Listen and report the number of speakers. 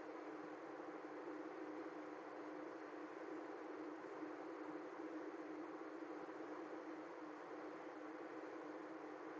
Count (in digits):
0